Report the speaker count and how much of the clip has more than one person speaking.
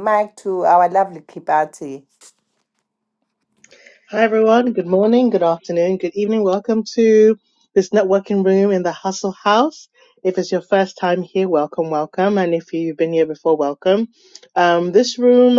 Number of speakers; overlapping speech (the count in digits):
2, no overlap